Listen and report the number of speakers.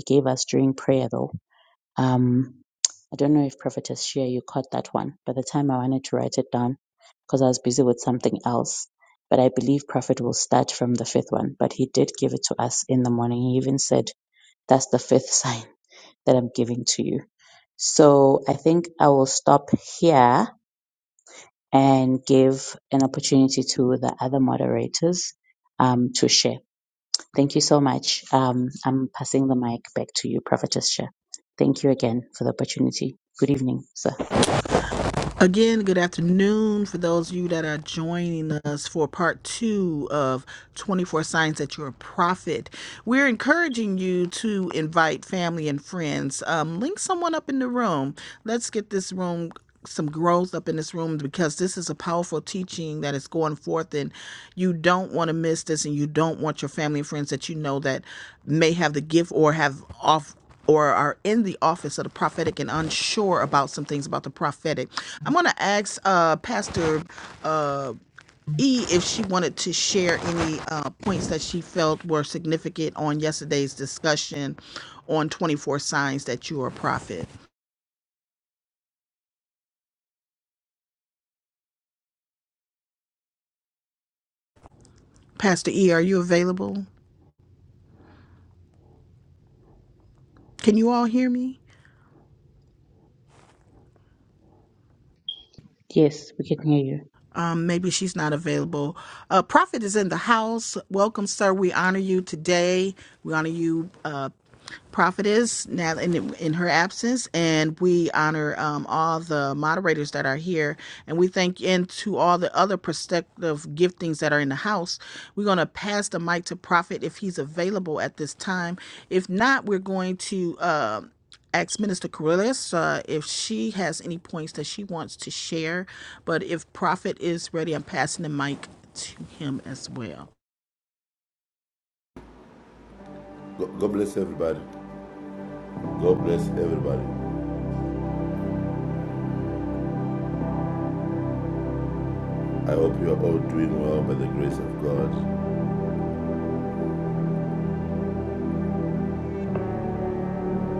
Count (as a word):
three